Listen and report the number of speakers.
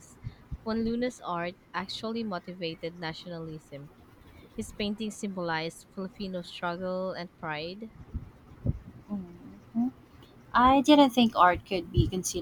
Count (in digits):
2